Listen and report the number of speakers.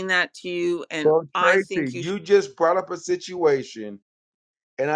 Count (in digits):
2